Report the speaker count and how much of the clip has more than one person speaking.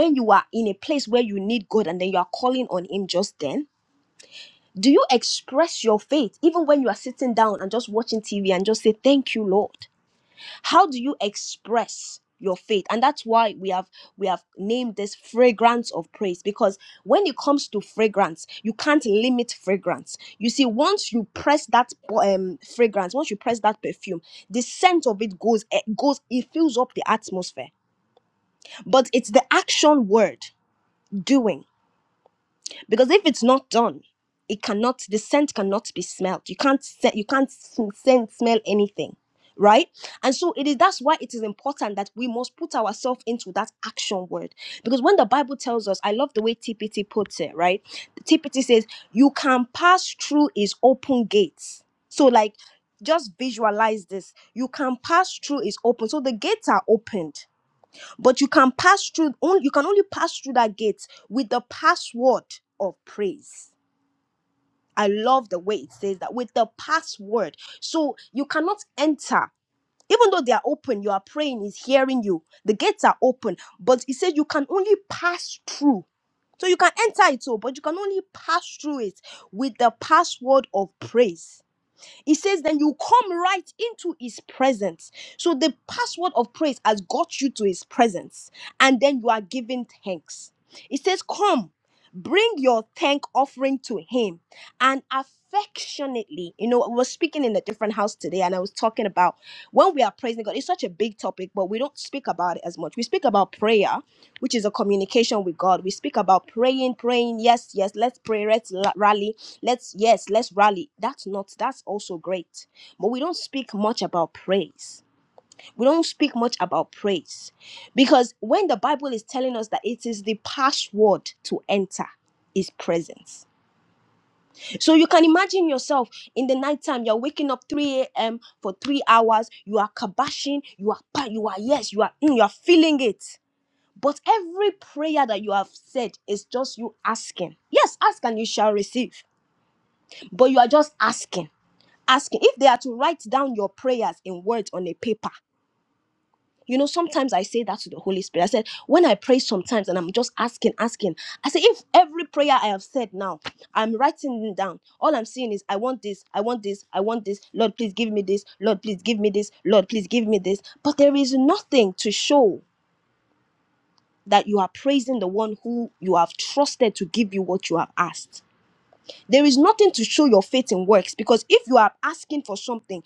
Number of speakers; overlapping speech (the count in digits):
1, no overlap